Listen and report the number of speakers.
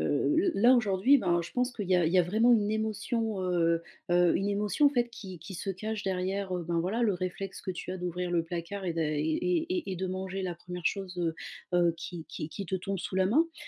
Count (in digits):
1